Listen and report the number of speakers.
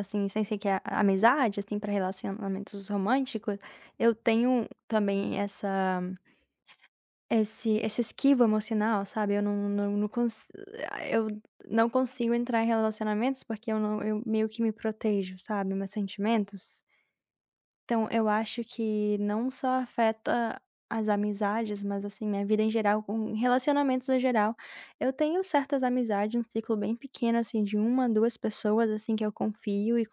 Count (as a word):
one